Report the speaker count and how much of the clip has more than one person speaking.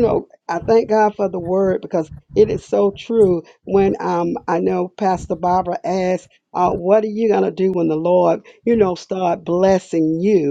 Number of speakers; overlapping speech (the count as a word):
one, no overlap